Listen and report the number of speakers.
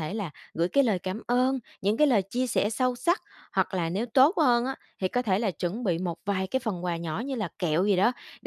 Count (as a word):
one